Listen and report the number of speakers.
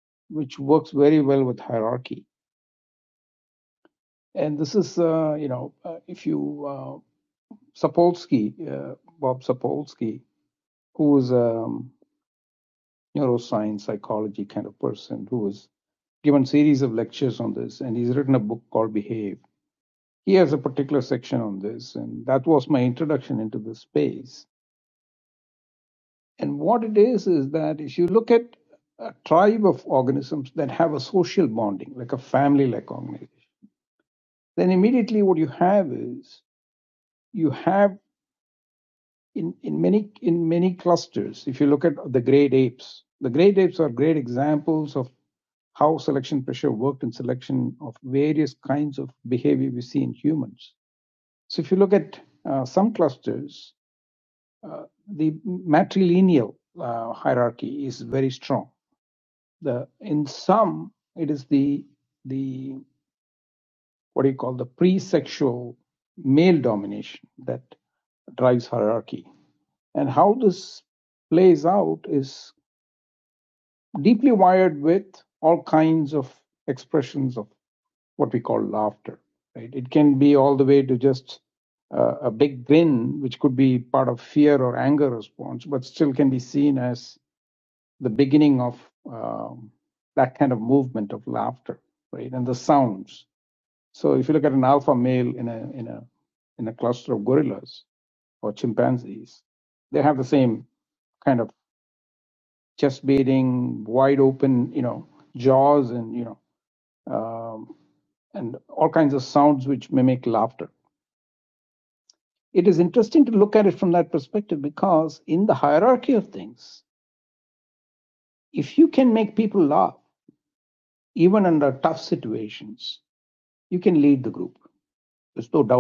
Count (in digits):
1